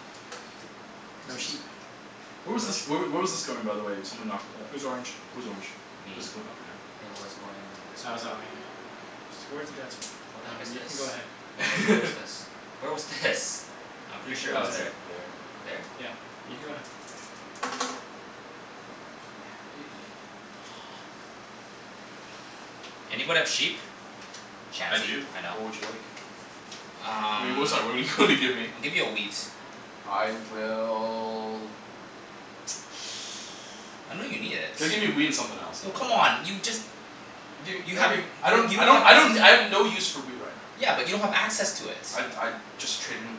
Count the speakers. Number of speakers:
three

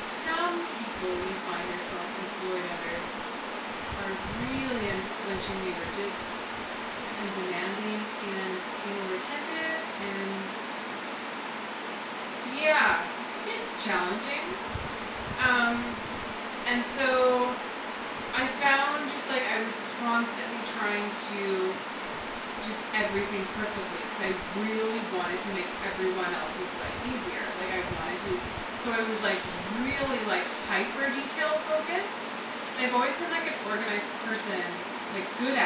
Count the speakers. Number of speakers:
one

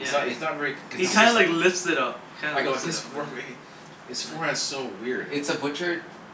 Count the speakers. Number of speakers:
three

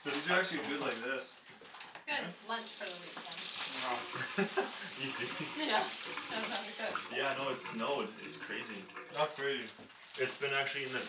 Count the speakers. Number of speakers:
three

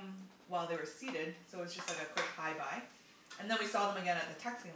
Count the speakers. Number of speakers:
one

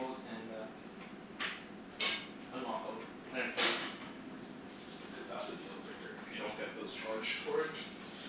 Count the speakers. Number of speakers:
two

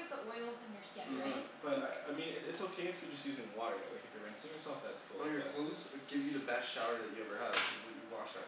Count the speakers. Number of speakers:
three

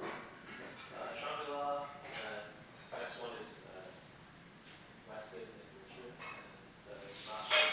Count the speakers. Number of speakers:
one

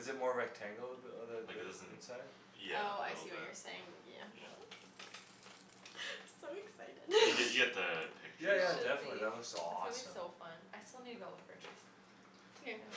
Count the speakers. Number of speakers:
four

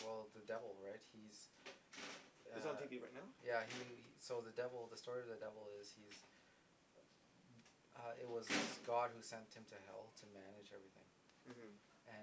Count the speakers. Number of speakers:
two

